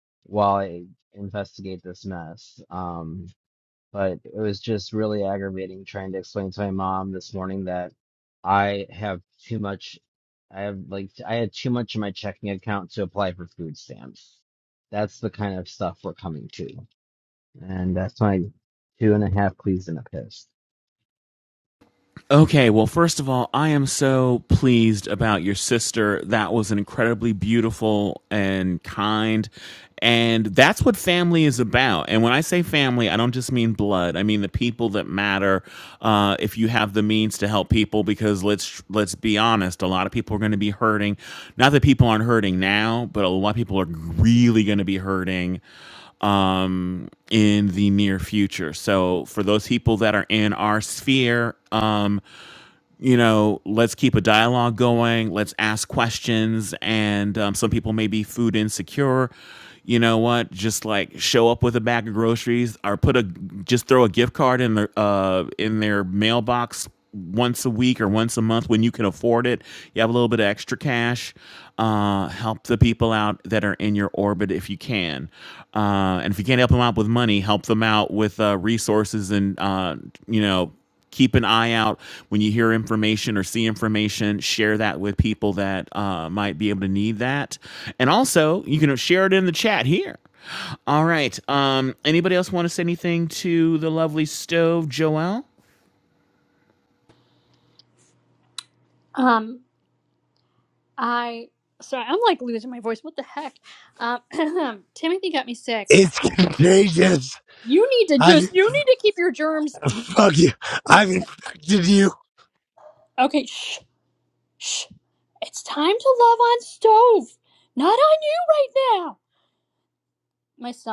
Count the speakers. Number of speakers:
4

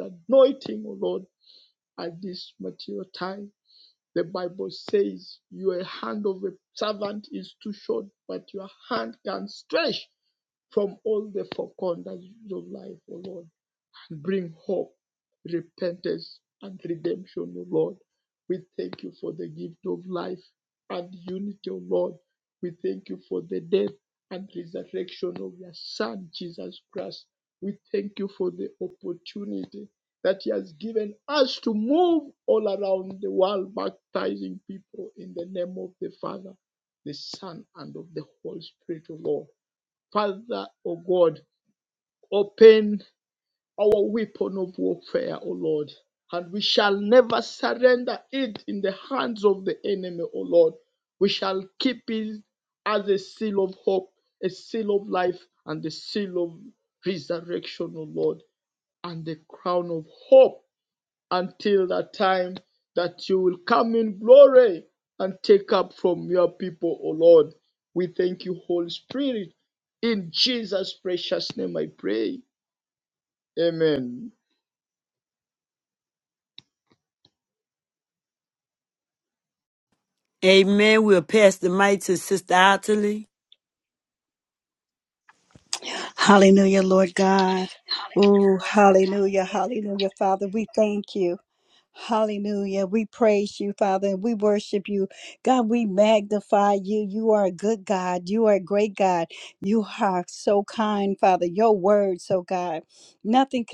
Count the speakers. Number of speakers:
3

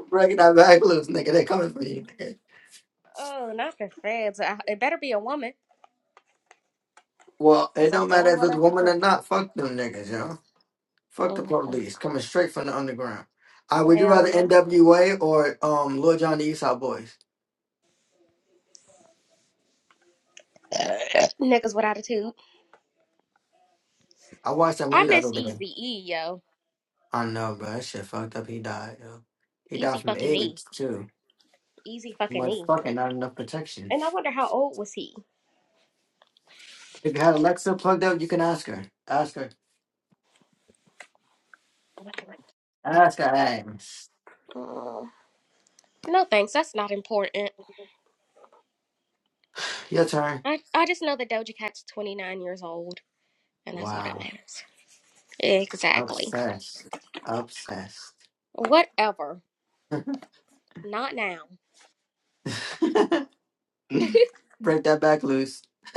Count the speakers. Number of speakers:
2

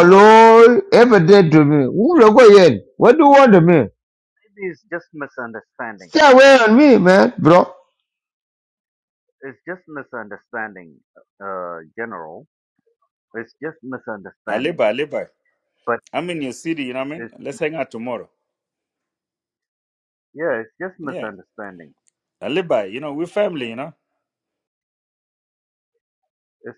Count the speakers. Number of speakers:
3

